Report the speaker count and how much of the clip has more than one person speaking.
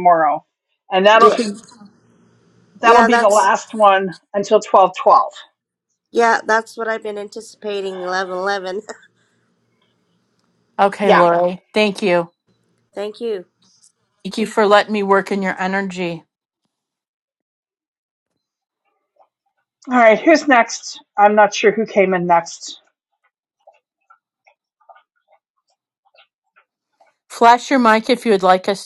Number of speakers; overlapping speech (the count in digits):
3, about 3%